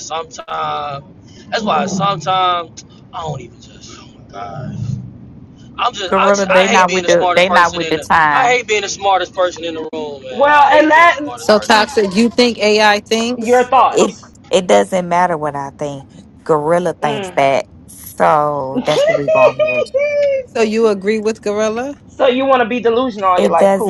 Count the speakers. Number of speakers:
4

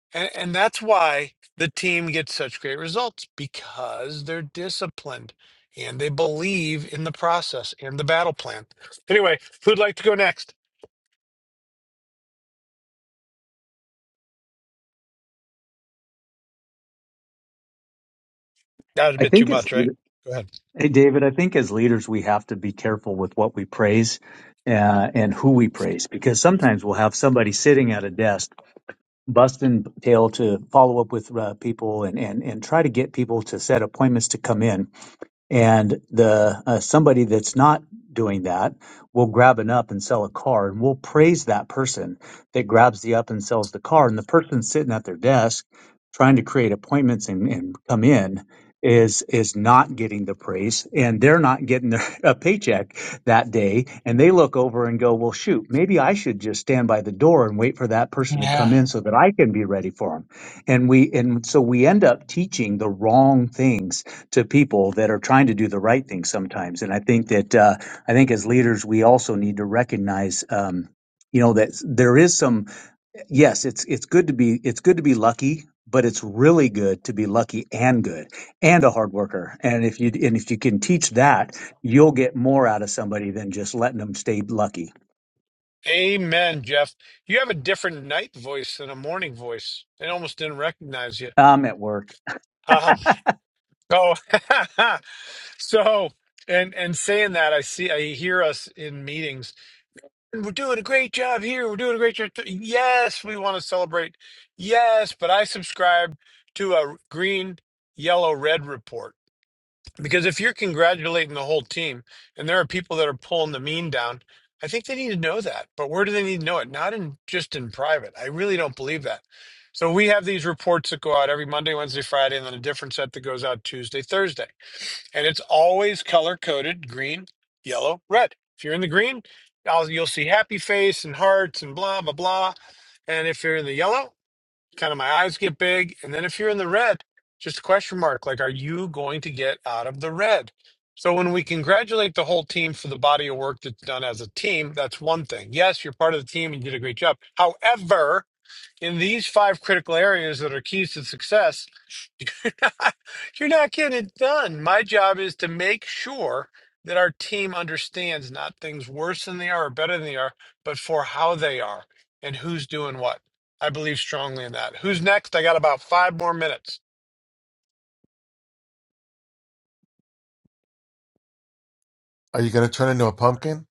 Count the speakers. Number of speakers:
3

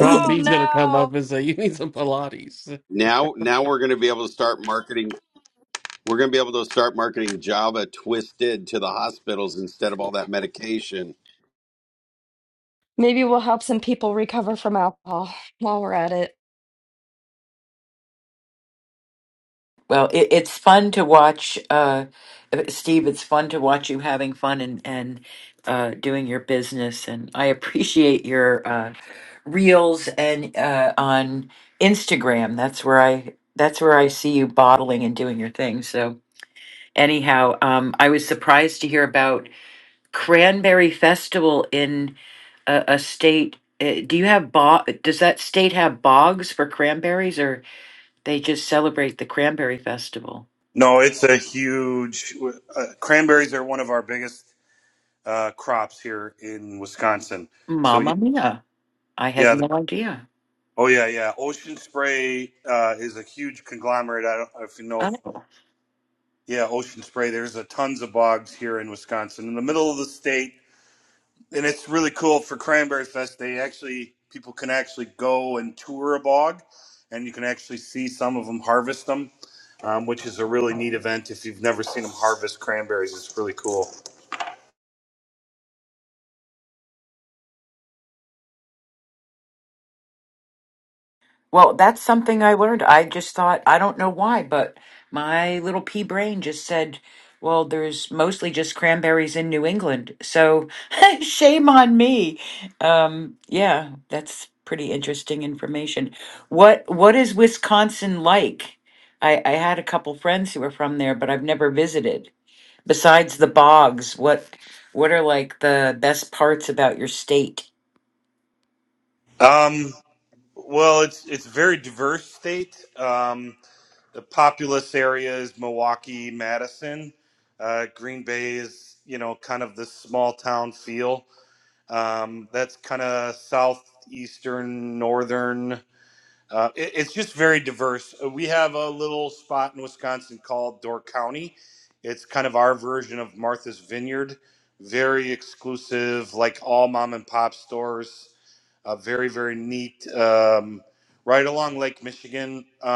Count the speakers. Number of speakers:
5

